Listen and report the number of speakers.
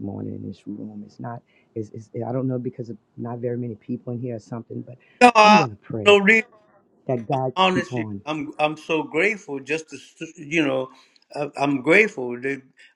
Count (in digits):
2